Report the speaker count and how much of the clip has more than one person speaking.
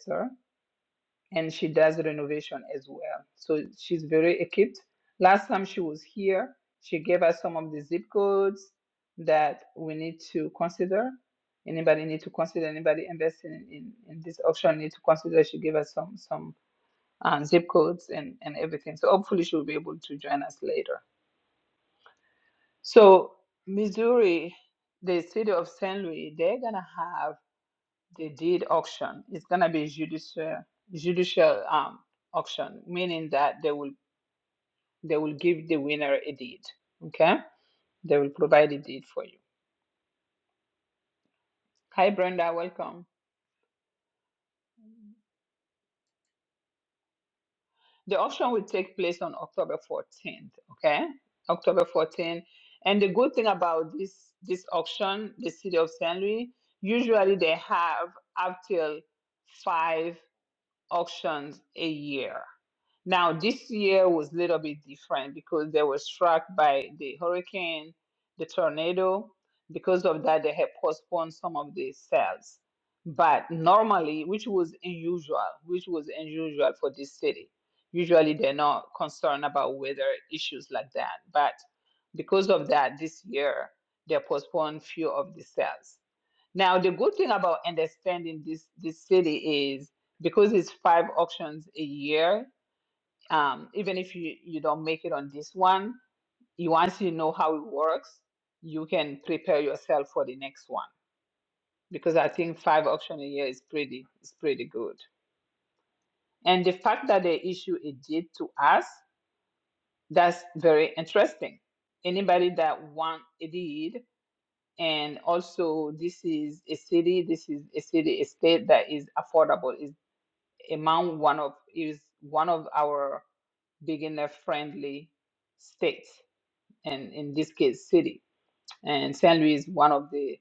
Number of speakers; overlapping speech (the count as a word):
one, no overlap